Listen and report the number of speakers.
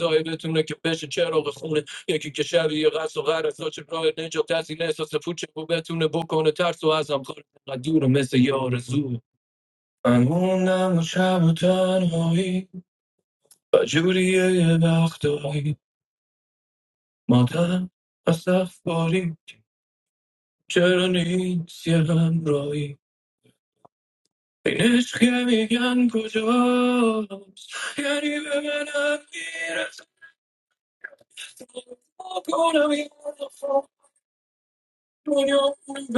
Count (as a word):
one